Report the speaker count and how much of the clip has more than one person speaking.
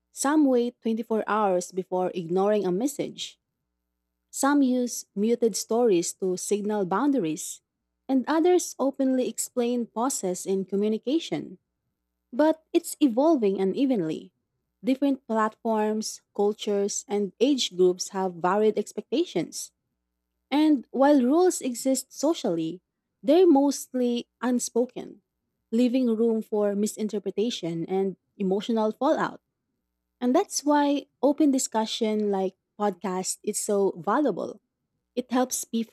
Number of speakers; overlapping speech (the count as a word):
one, no overlap